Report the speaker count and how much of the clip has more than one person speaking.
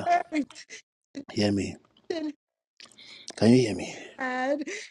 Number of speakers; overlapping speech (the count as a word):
two, about 2%